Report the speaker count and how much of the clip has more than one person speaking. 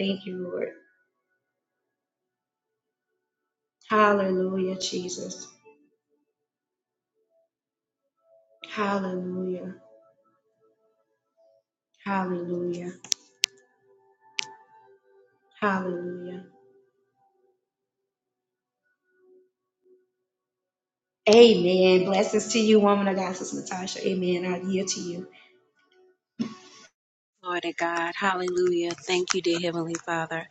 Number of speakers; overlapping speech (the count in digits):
2, no overlap